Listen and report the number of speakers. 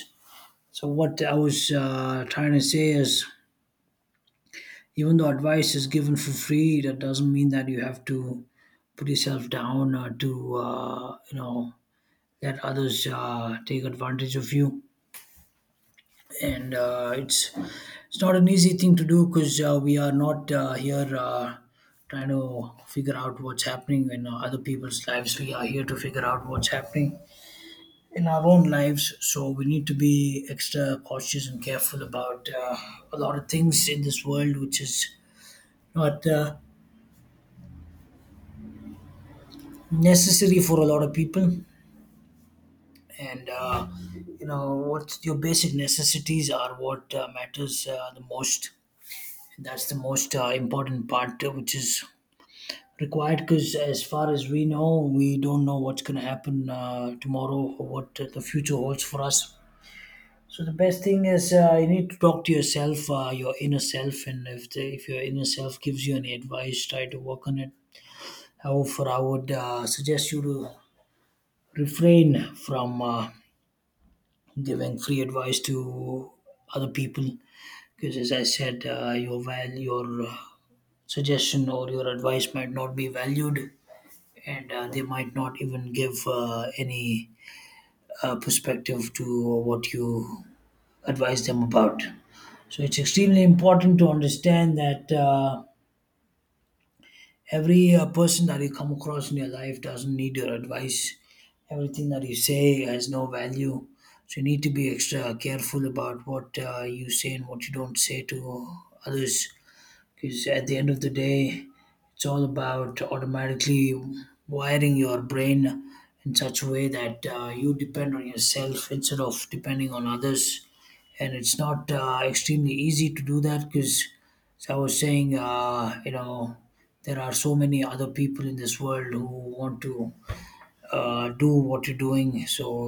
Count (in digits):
1